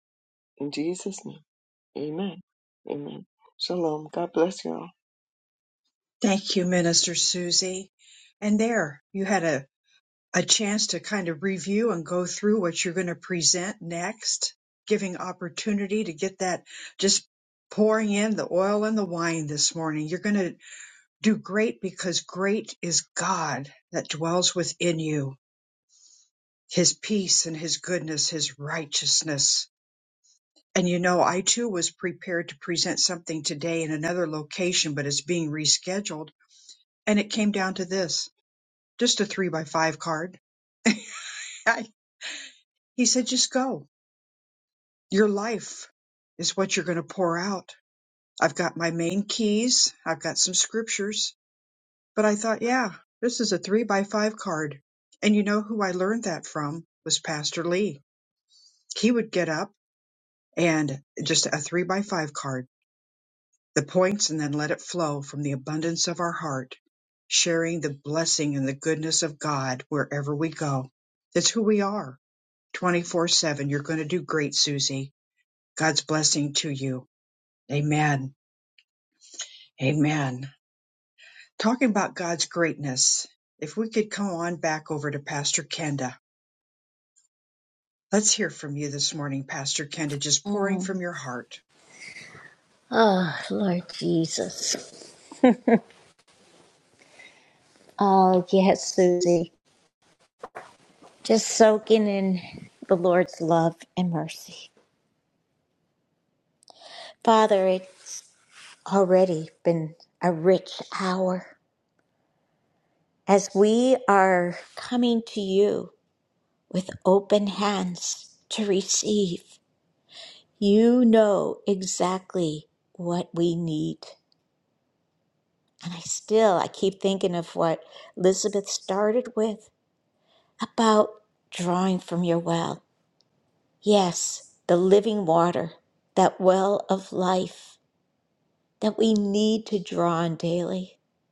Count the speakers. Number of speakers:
3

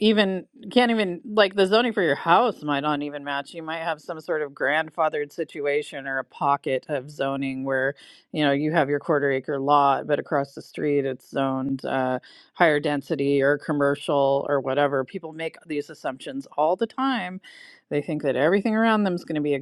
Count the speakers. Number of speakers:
1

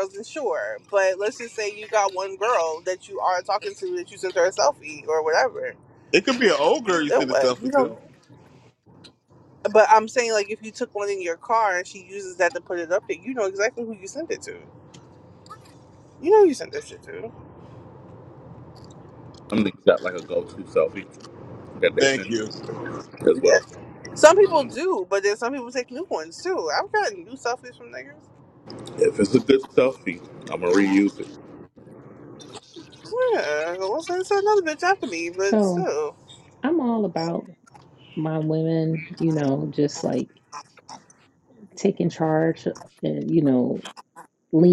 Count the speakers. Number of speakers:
4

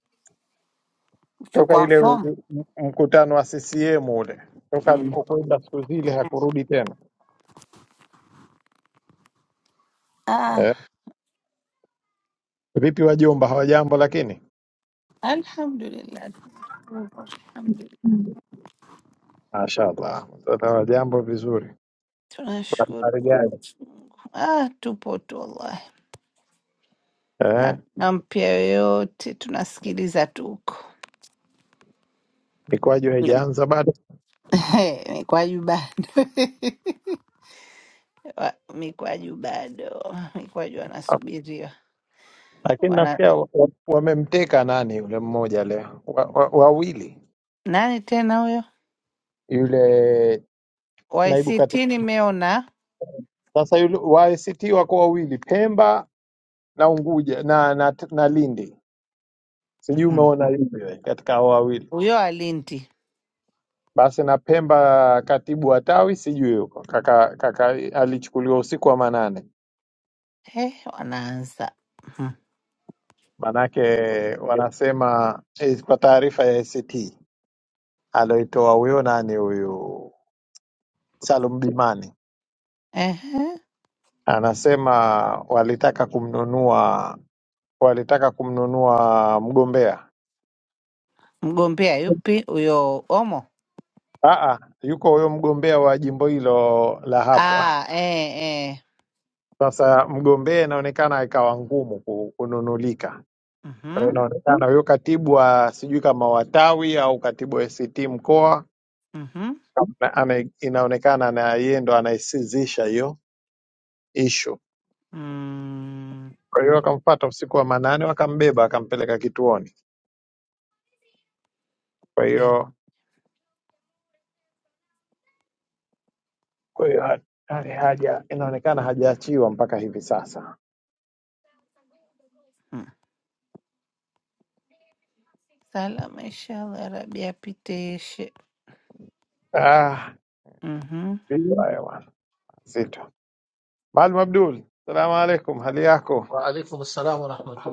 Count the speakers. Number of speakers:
3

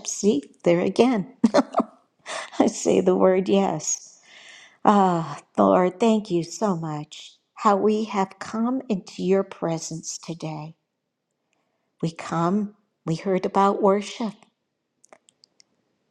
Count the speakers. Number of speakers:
1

